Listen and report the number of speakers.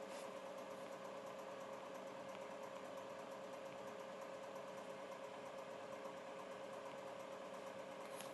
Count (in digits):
0